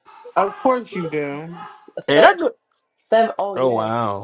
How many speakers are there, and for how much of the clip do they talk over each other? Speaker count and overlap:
3, about 15%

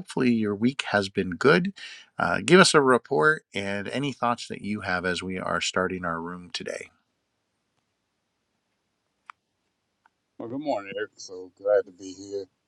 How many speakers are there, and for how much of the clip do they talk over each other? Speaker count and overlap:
2, no overlap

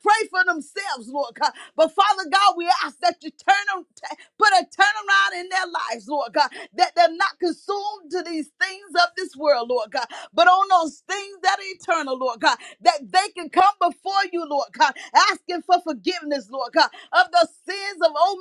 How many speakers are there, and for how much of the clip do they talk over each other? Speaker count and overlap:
1, no overlap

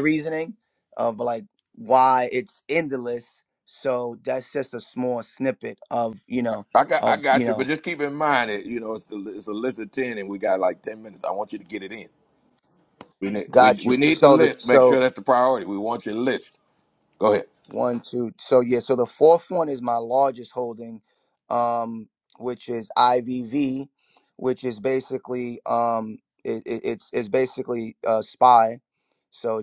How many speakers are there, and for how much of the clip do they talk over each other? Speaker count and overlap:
2, about 8%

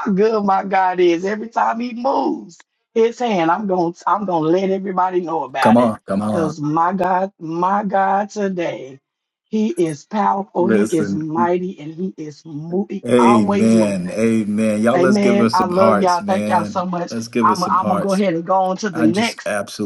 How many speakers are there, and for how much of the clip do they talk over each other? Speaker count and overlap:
2, about 31%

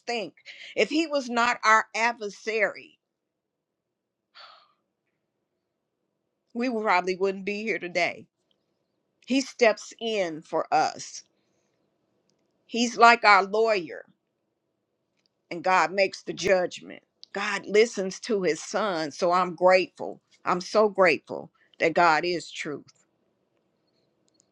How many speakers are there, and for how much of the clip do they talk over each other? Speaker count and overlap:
1, no overlap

